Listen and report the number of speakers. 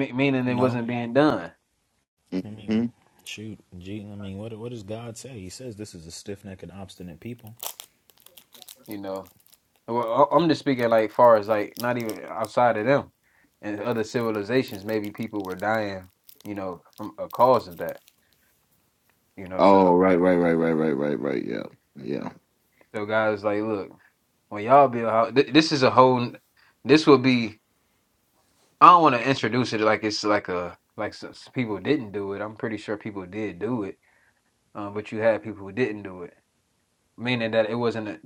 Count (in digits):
3